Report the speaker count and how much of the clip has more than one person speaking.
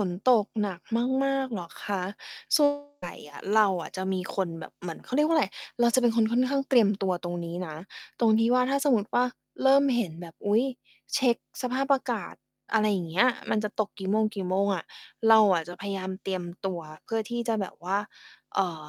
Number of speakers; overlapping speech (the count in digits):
1, no overlap